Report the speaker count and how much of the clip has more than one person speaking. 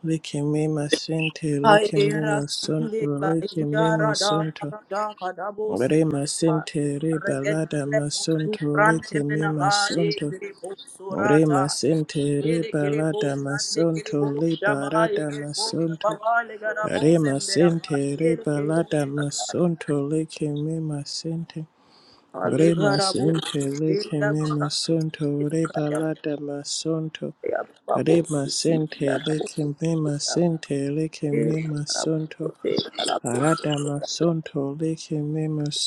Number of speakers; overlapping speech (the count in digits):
2, about 55%